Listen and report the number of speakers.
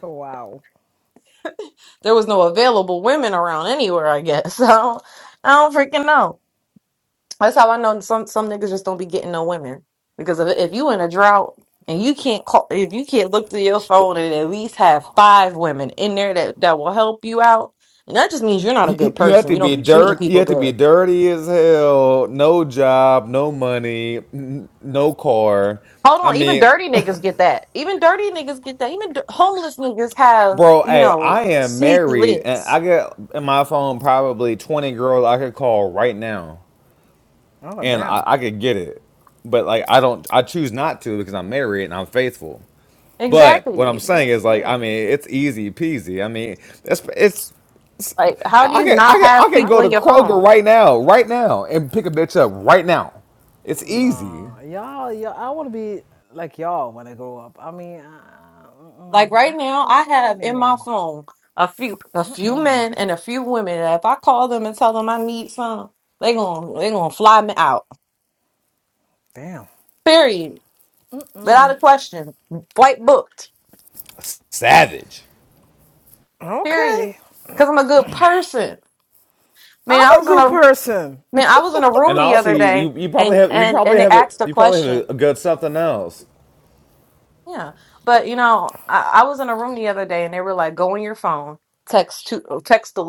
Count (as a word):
three